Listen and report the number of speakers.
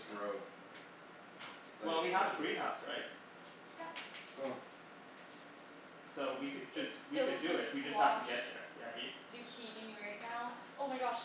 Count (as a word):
three